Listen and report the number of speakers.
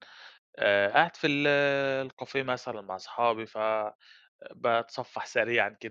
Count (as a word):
one